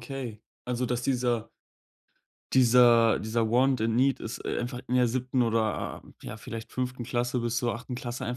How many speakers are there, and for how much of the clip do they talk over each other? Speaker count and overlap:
1, no overlap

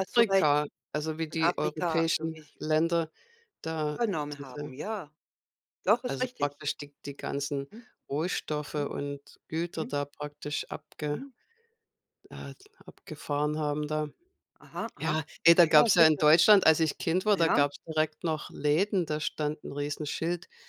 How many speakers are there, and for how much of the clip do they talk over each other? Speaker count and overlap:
2, about 19%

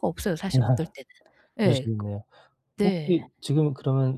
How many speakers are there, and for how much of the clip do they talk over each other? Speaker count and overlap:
2, about 28%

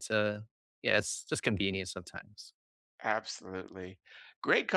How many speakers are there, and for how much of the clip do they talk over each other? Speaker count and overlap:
2, no overlap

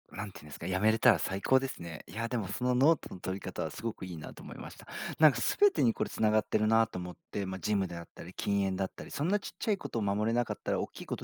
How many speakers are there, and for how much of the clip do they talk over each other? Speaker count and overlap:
1, no overlap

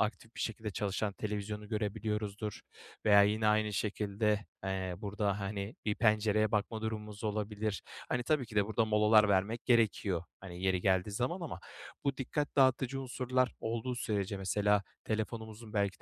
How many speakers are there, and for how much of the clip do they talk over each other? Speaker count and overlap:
1, no overlap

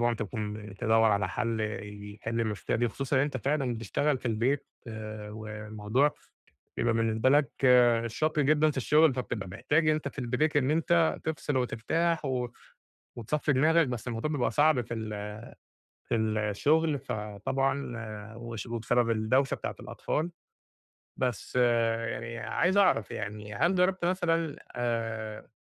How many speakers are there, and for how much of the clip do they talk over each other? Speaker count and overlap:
1, no overlap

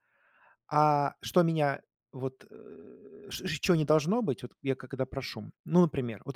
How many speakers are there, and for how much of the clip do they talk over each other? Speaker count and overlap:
1, no overlap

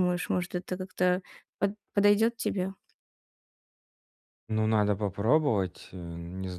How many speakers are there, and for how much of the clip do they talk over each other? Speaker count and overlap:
2, no overlap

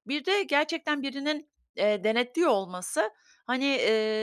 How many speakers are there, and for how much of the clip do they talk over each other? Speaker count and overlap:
1, no overlap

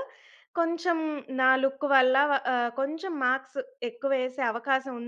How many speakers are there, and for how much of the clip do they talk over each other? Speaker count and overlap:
1, no overlap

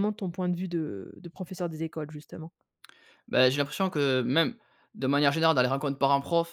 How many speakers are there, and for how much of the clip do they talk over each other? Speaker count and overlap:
2, no overlap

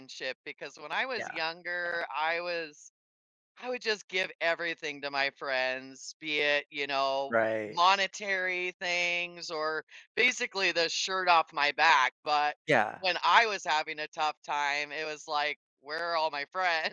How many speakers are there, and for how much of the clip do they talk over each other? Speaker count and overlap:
2, about 3%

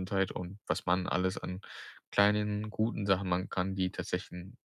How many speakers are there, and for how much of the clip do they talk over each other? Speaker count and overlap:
1, no overlap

